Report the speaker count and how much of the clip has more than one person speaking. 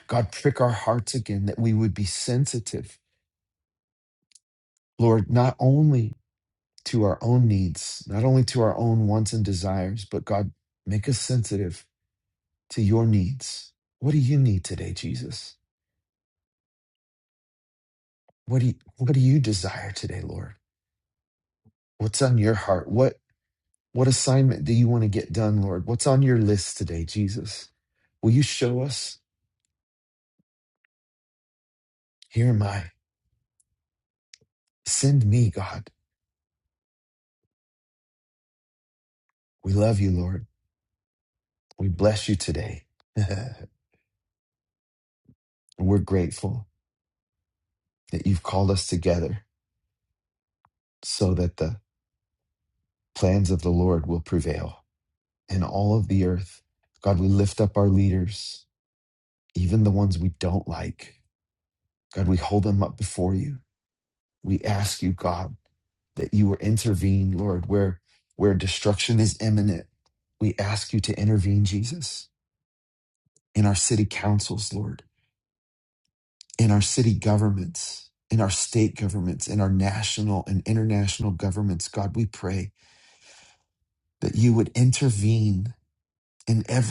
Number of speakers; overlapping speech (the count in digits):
1, no overlap